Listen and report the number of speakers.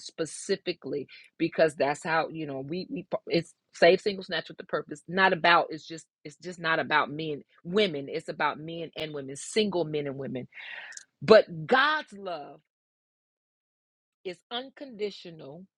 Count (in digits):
1